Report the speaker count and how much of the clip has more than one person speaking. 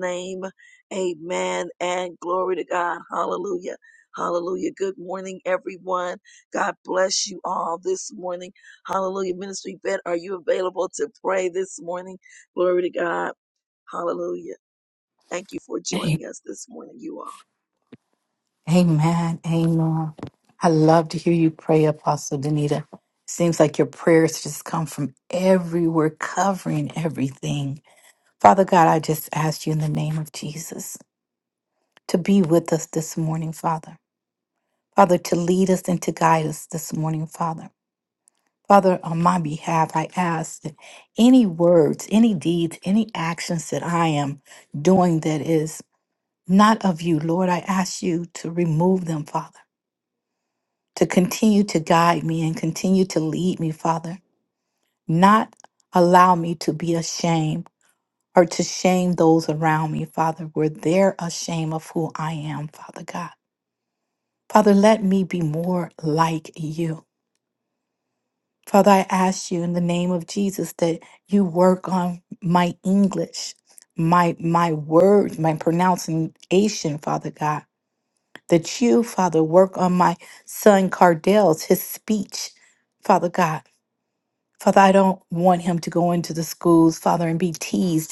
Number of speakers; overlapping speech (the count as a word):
two, under 1%